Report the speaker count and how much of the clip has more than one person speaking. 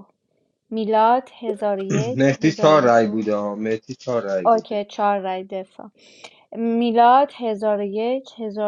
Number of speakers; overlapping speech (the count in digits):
2, about 17%